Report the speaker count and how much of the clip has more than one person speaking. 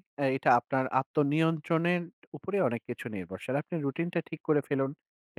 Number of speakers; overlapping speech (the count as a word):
one, no overlap